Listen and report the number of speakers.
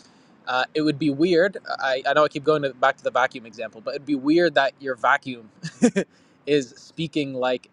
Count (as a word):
one